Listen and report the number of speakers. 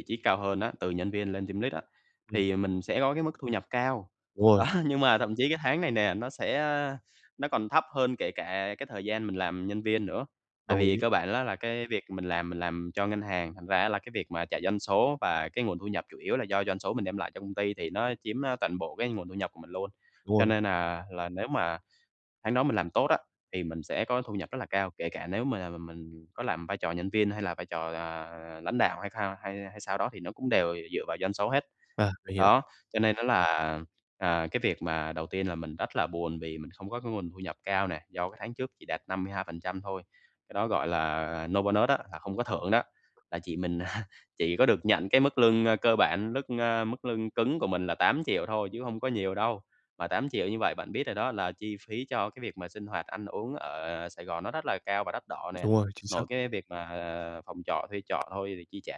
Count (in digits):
2